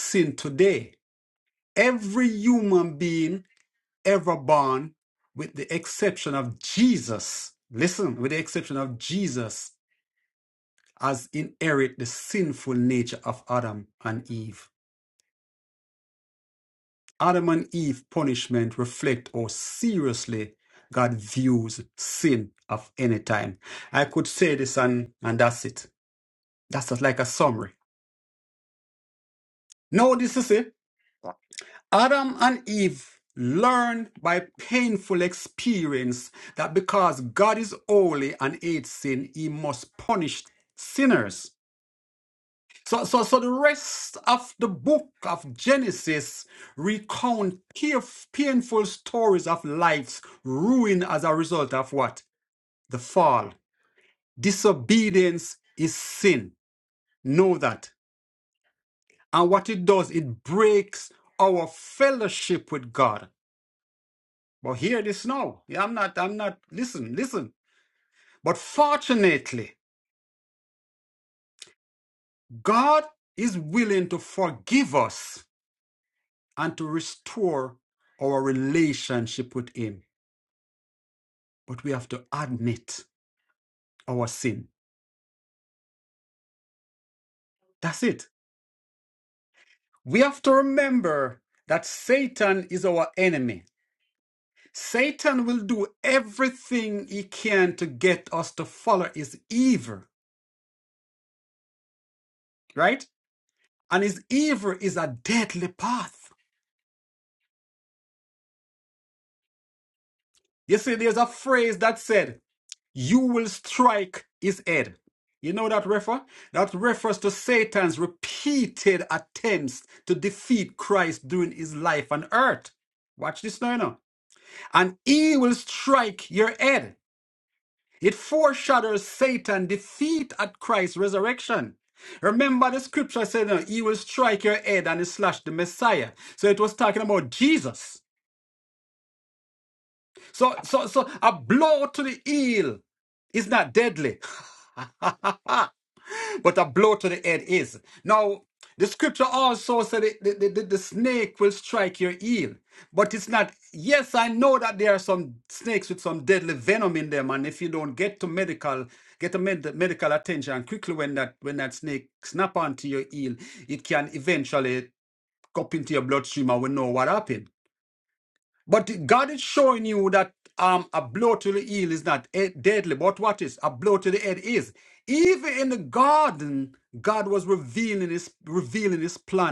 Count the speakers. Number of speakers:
1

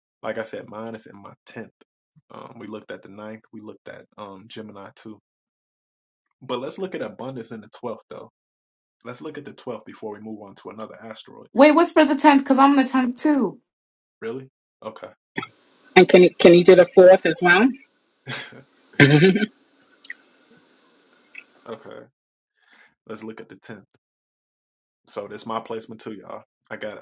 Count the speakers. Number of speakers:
3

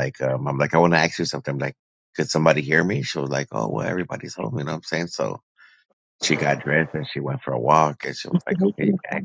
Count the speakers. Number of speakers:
1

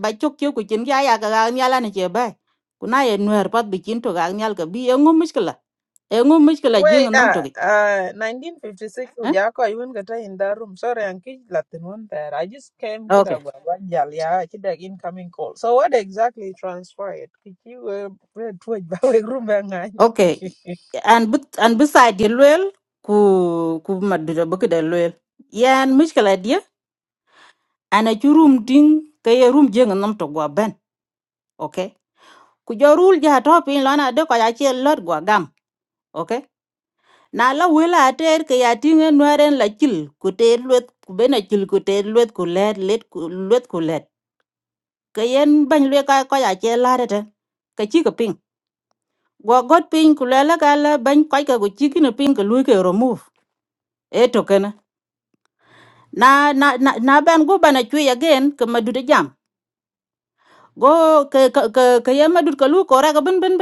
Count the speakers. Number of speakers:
2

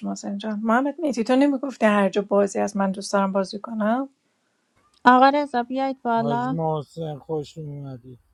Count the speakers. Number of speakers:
3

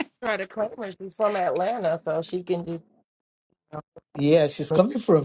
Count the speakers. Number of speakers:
2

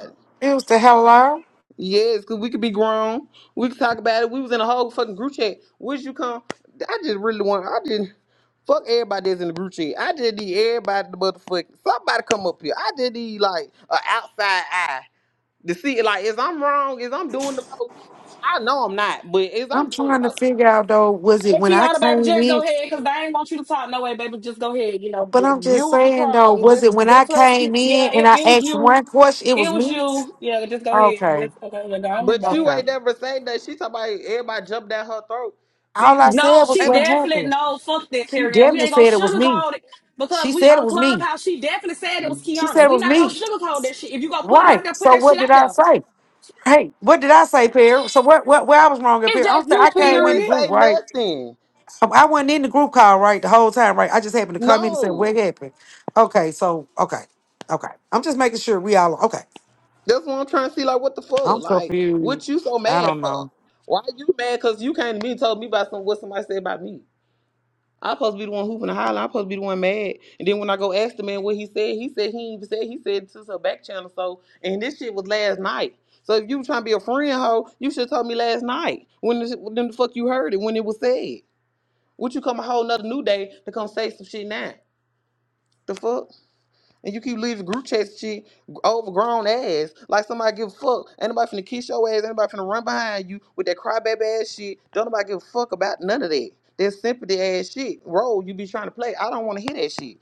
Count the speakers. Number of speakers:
3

